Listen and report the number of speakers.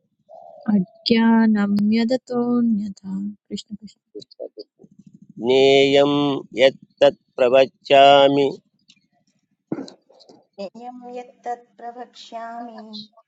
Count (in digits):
3